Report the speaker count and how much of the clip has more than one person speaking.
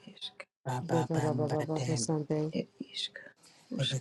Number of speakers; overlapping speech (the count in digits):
2, about 1%